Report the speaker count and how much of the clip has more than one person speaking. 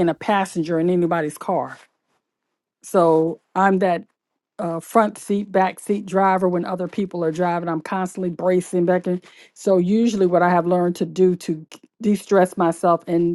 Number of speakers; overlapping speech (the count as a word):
one, no overlap